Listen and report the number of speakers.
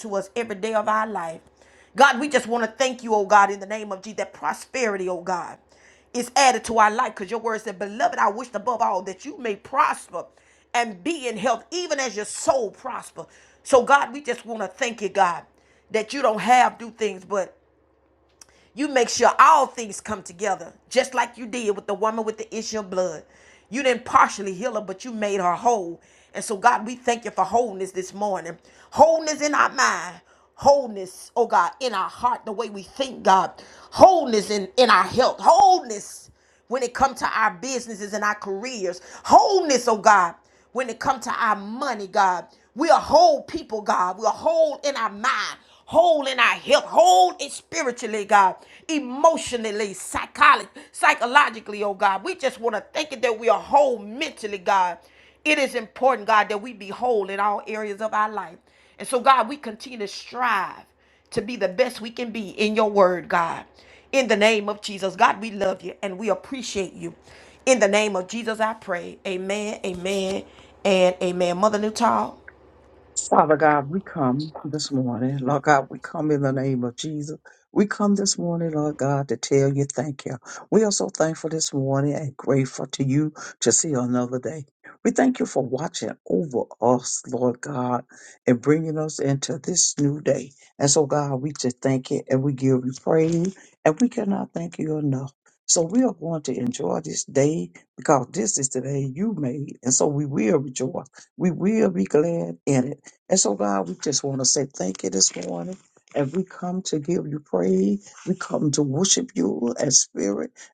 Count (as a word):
two